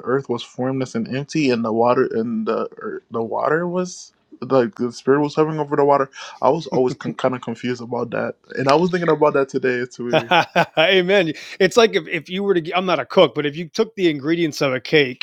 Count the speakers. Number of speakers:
2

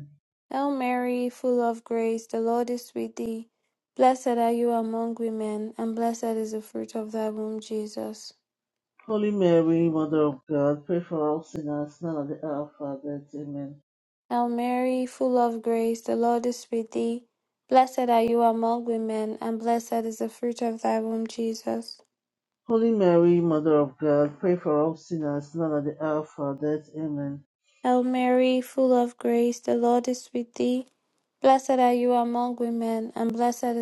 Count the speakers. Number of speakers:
2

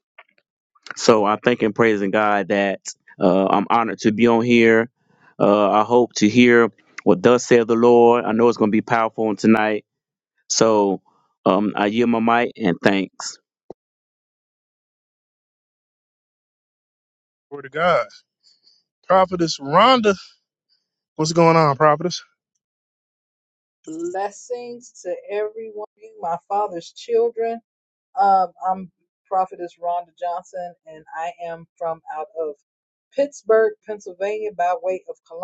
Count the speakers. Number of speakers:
3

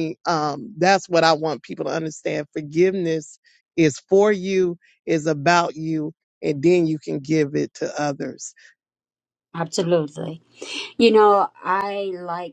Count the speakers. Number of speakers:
2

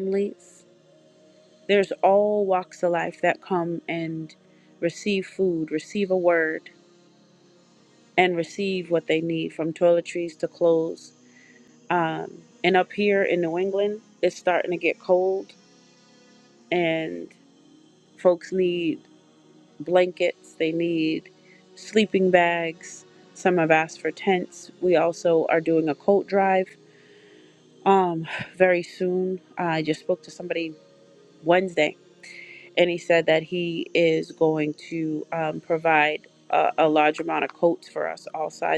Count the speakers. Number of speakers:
1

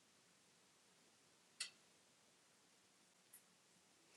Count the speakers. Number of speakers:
0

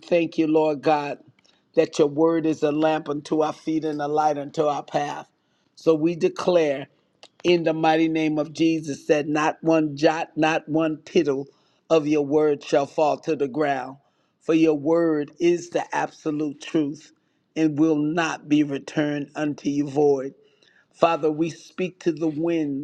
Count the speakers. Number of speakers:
1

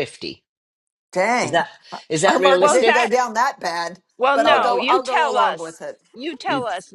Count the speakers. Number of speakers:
3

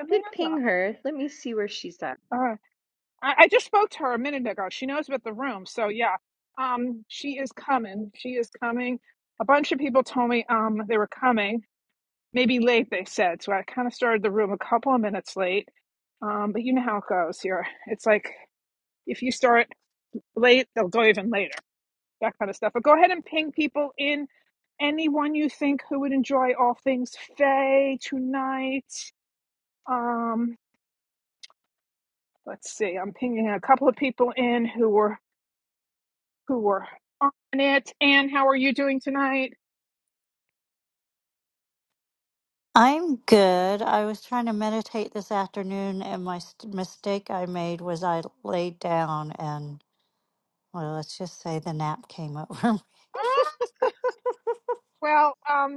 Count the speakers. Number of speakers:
3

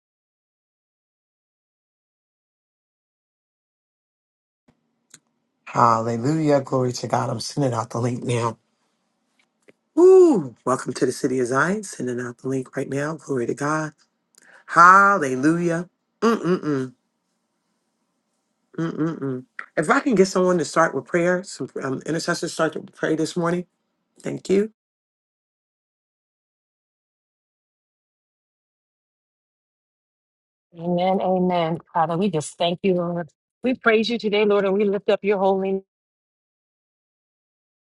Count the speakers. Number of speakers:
2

